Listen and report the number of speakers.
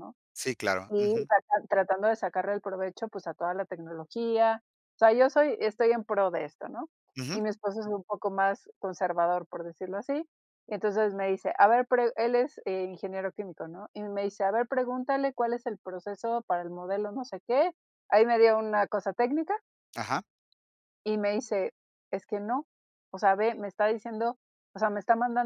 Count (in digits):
2